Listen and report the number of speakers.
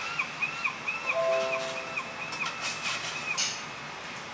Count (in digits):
0